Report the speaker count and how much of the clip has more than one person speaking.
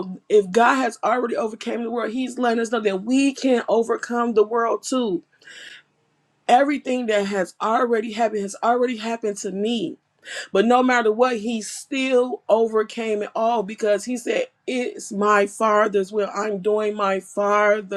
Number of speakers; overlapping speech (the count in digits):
1, no overlap